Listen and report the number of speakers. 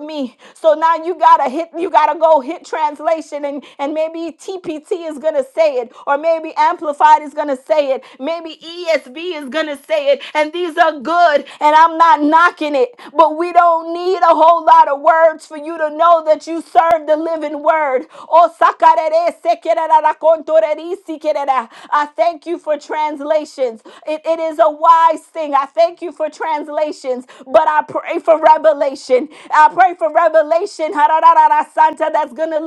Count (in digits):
1